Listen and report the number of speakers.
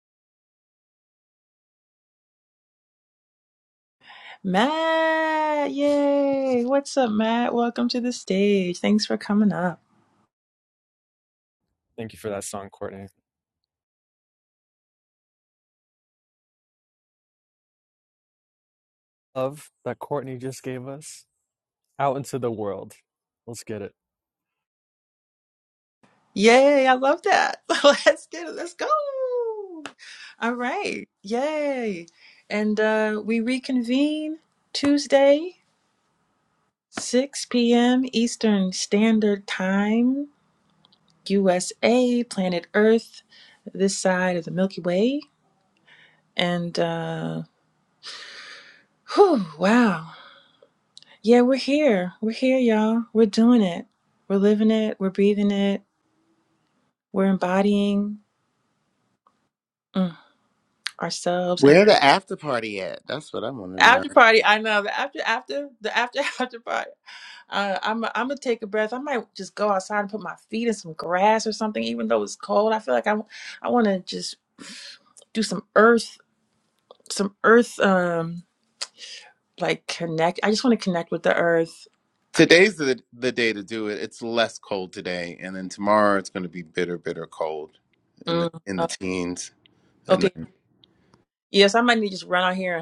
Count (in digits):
3